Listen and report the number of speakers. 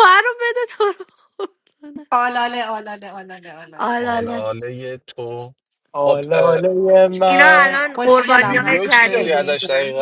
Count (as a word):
four